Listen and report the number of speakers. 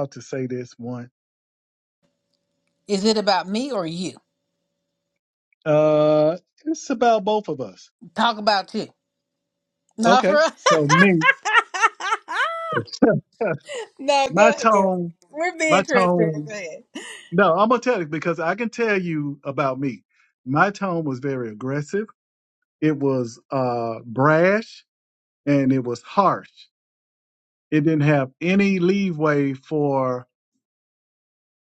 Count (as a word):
two